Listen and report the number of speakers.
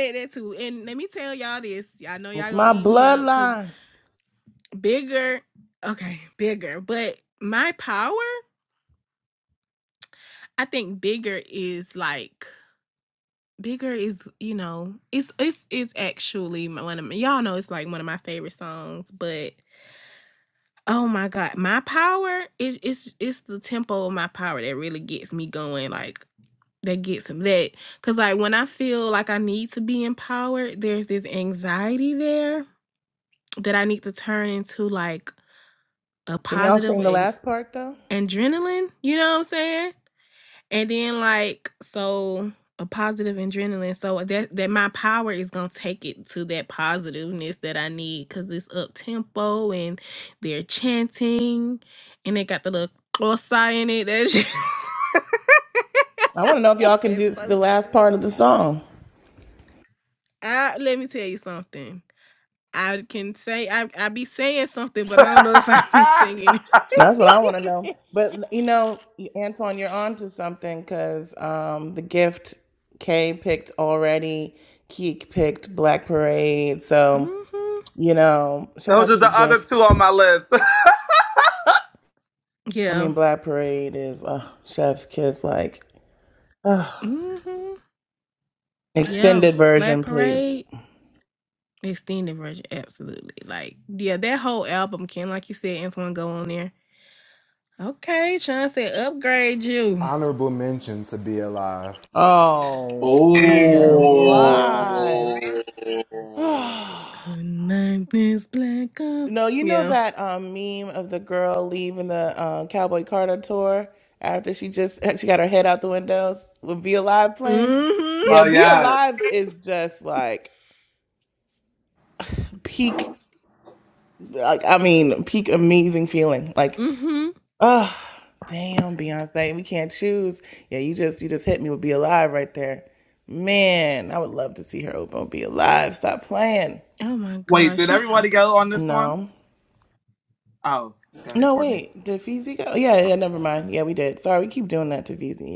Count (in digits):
4